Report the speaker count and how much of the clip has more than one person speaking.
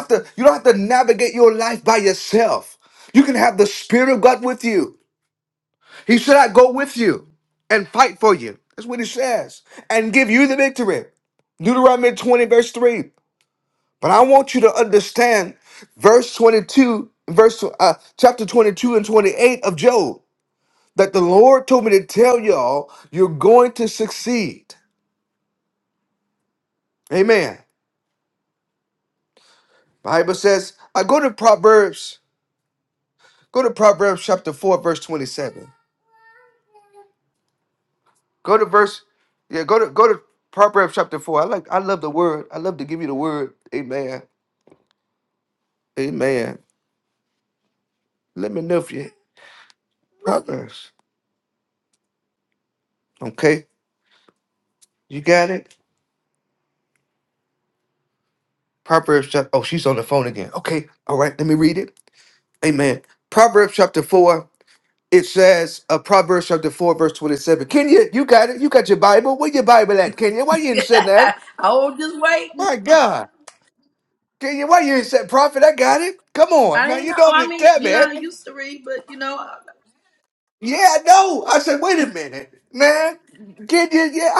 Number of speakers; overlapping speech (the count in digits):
2, about 2%